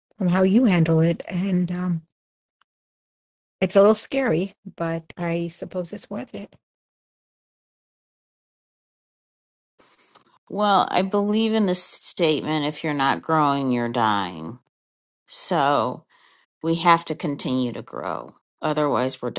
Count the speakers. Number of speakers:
two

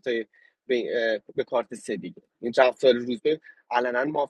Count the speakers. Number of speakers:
one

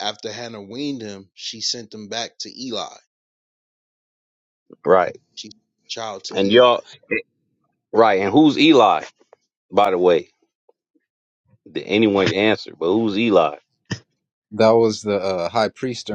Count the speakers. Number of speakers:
three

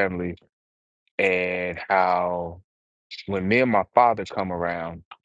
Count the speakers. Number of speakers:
one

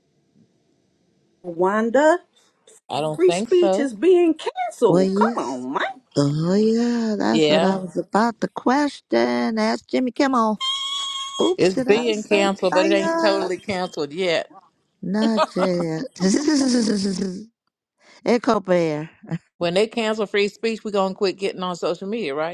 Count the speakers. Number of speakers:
three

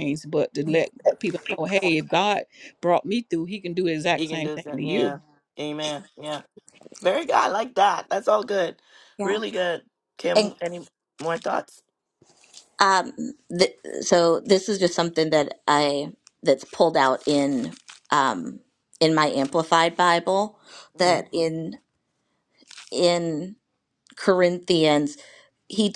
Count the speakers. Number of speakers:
three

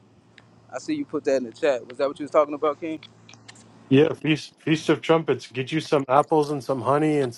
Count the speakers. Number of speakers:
two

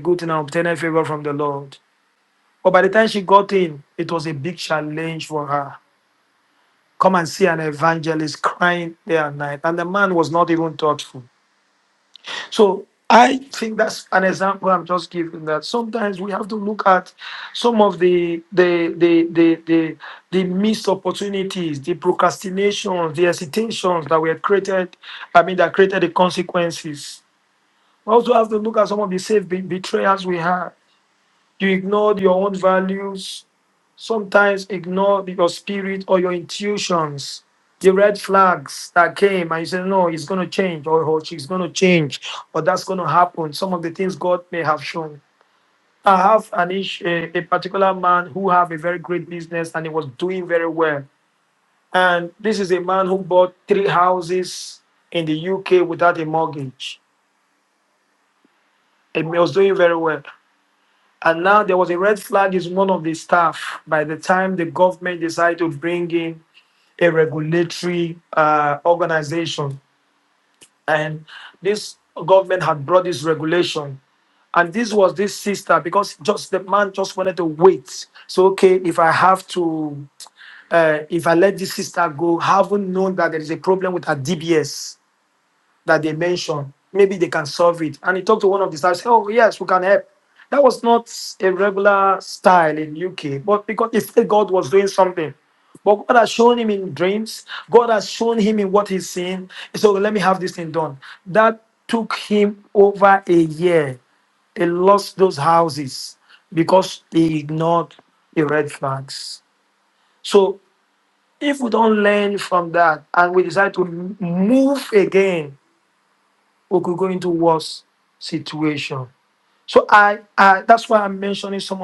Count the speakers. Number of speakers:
one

